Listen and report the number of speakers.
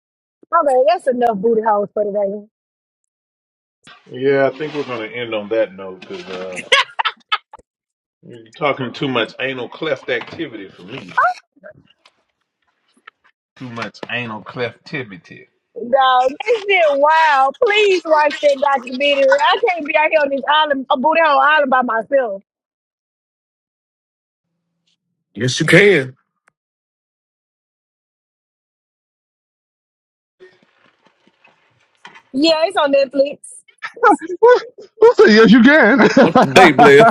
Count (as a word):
four